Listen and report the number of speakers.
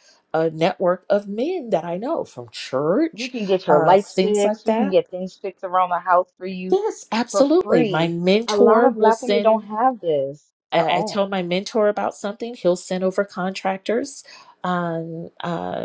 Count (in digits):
2